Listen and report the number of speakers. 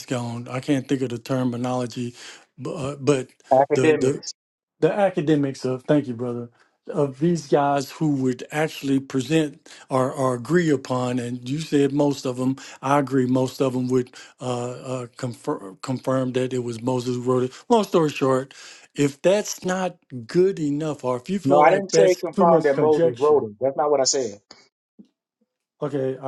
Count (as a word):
two